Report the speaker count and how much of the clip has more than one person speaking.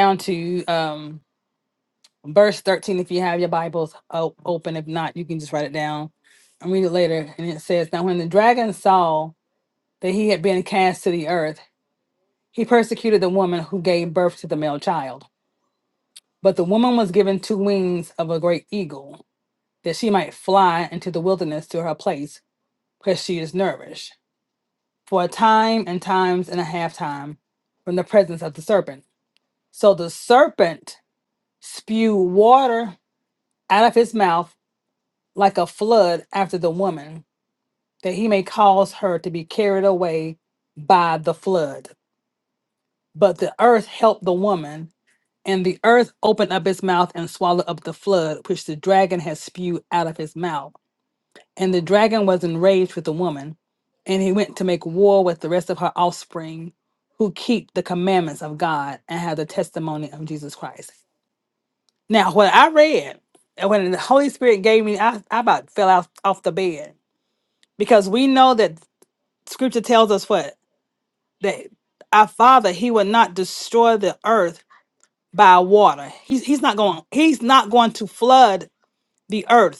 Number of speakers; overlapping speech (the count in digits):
1, no overlap